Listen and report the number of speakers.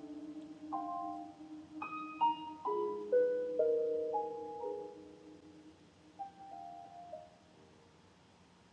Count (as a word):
zero